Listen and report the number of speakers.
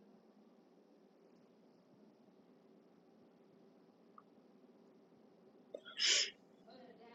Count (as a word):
zero